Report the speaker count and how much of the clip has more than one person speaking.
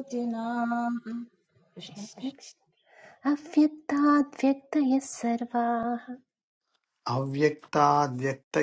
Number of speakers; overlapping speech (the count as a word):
three, about 5%